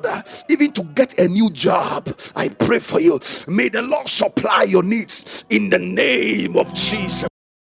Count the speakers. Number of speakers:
1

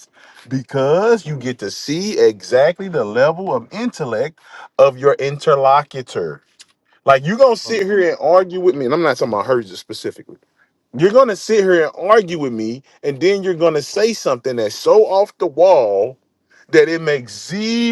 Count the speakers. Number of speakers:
1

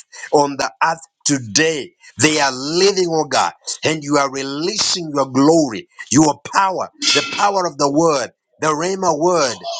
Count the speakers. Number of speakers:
1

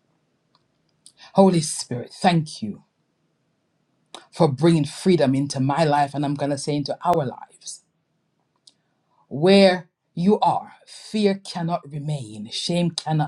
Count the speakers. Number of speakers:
1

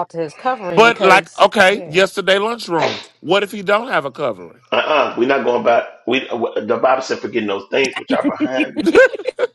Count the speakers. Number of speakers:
3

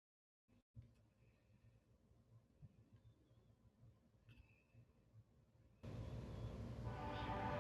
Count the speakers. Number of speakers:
0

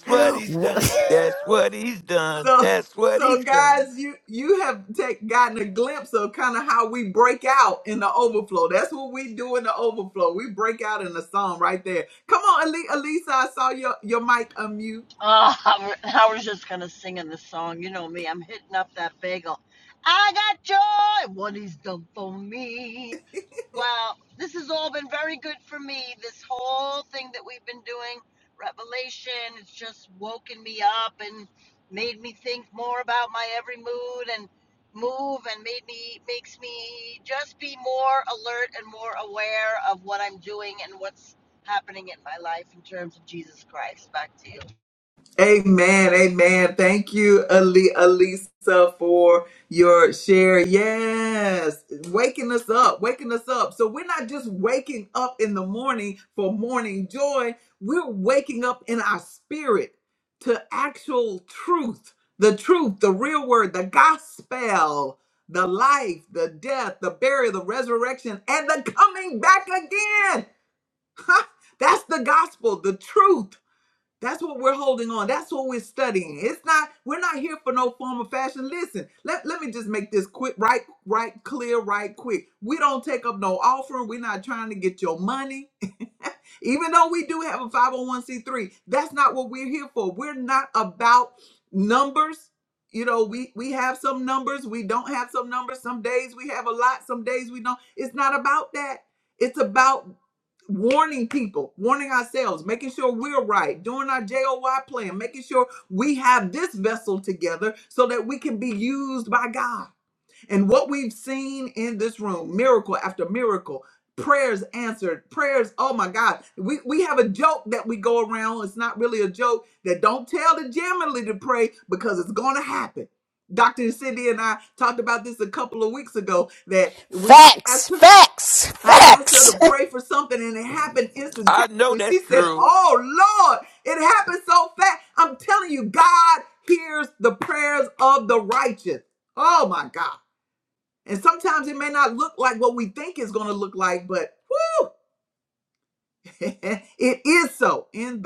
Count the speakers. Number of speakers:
4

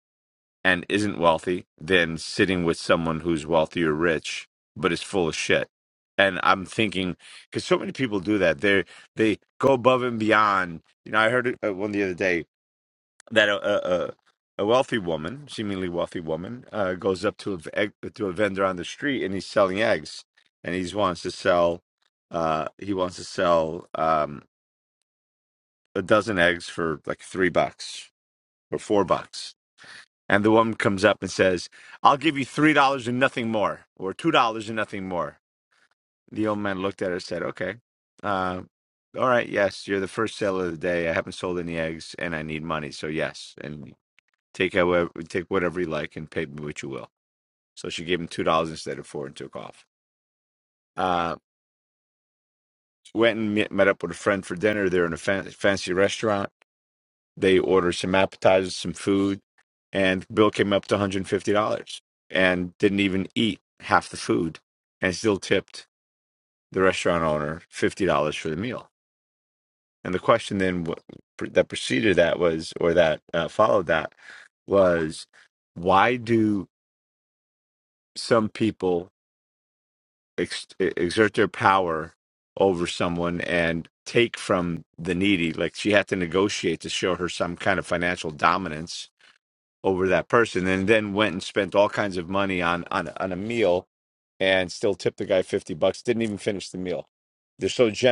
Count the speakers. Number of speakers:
1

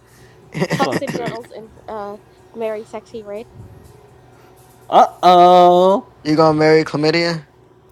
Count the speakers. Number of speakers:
3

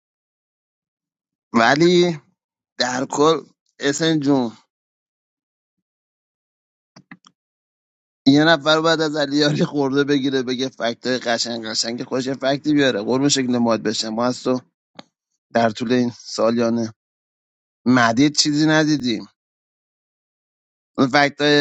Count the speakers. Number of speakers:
1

